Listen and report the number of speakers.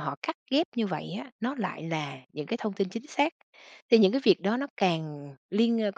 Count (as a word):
one